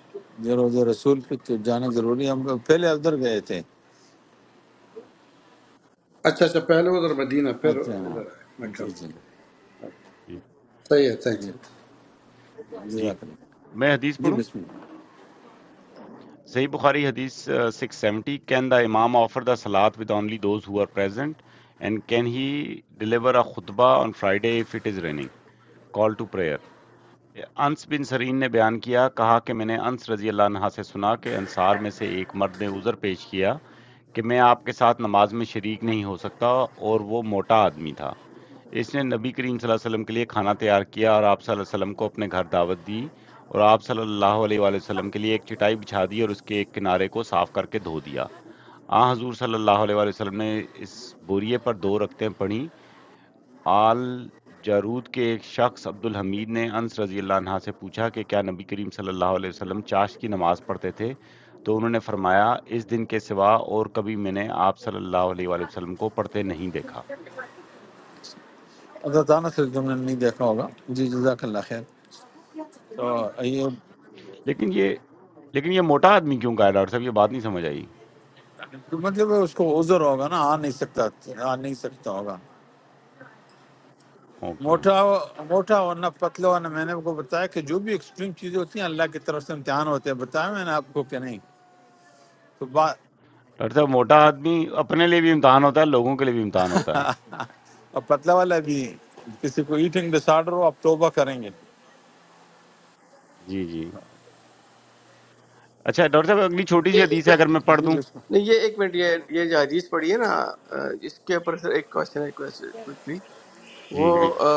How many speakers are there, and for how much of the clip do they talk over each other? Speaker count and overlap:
4, about 2%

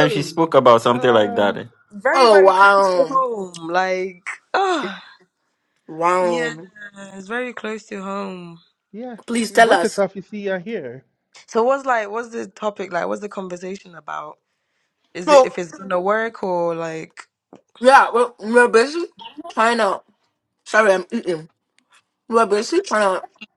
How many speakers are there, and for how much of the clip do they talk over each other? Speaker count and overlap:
4, about 14%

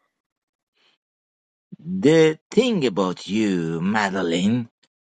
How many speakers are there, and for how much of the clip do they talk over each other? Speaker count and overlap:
1, no overlap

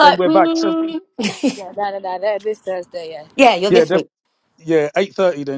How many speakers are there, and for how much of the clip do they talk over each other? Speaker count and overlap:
3, about 19%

